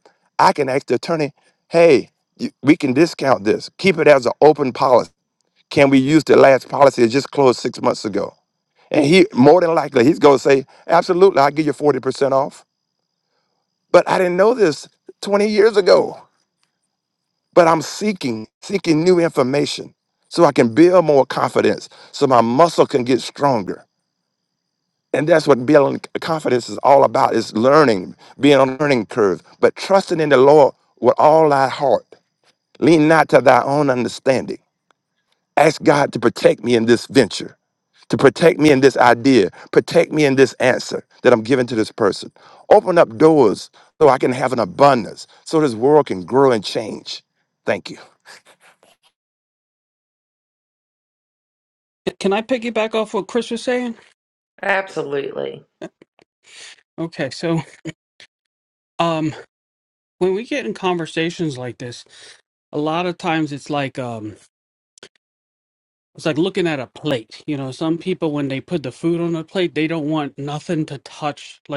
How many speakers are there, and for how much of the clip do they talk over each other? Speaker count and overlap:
three, no overlap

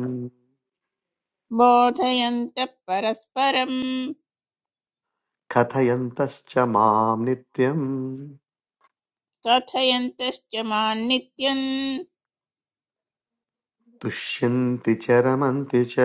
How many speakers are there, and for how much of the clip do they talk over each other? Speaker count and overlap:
two, no overlap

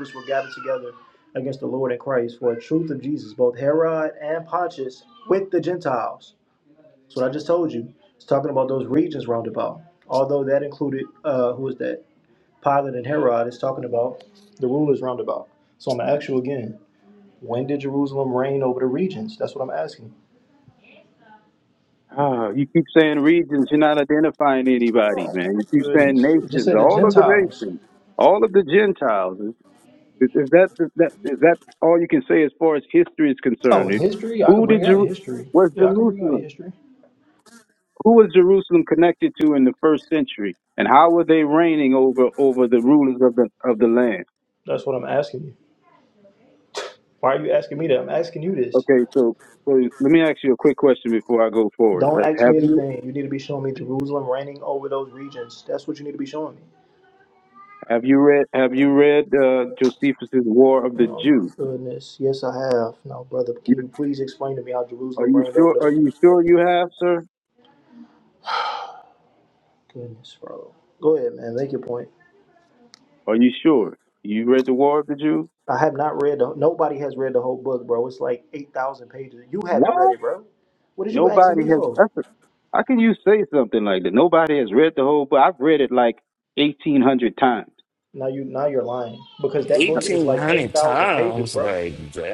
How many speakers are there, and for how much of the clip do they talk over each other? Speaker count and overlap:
three, about 10%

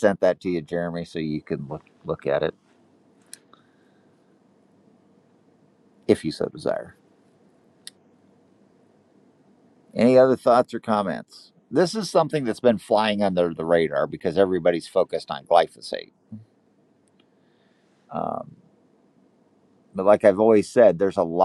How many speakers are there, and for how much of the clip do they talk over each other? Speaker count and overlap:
one, no overlap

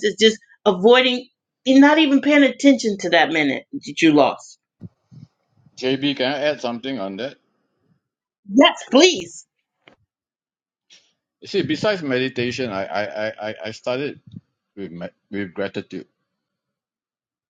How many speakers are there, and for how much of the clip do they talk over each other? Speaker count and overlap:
two, no overlap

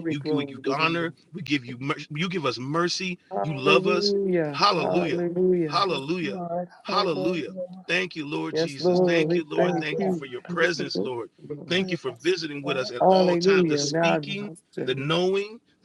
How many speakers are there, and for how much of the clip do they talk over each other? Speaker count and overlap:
three, about 46%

